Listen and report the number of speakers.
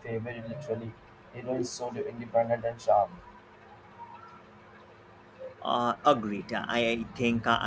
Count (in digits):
2